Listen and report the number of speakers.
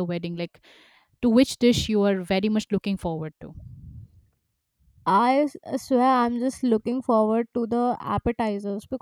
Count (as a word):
two